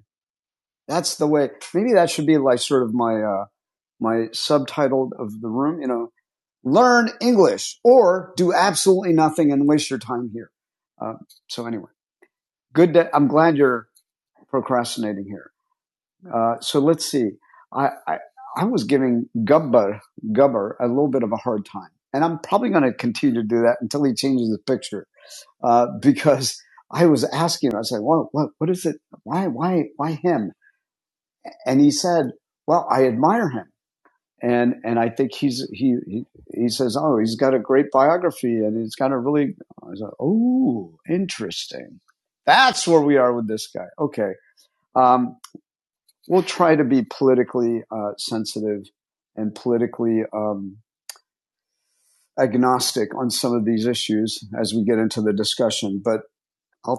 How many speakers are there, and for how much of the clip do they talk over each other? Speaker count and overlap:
1, no overlap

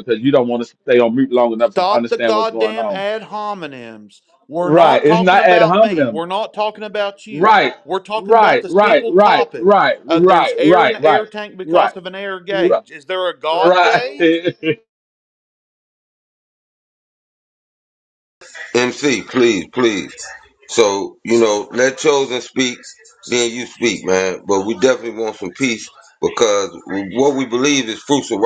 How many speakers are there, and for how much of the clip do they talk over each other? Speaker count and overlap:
3, about 23%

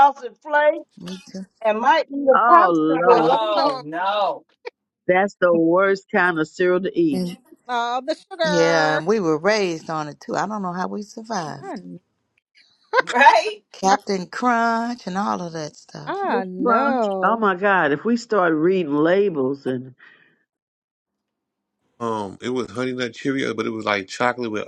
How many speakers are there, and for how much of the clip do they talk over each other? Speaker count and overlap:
6, about 14%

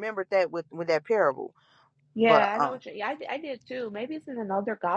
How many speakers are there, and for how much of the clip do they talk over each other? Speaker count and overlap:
2, about 9%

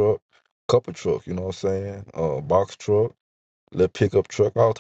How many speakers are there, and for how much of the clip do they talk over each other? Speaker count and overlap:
1, no overlap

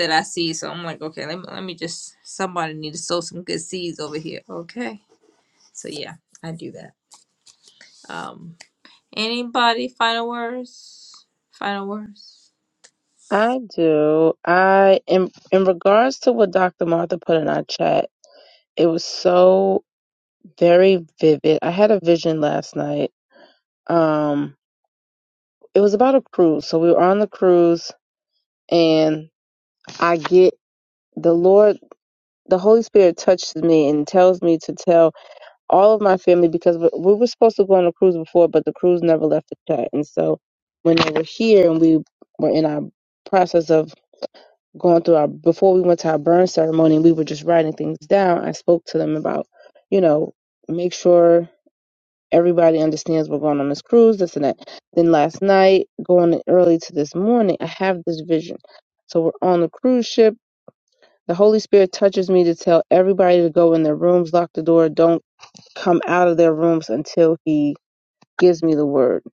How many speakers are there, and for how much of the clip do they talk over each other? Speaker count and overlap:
2, no overlap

